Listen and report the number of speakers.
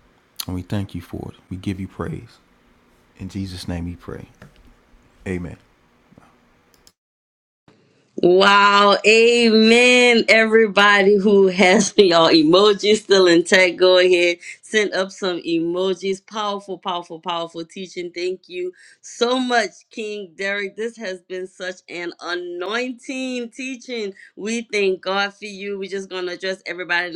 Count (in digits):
2